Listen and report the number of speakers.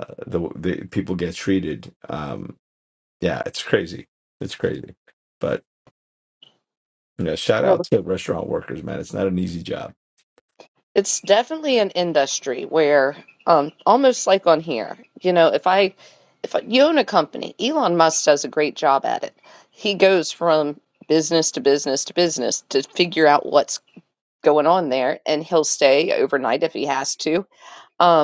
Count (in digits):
2